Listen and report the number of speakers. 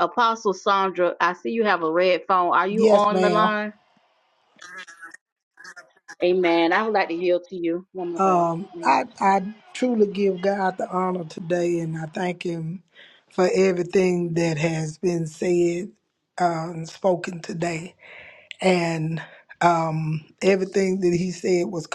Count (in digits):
2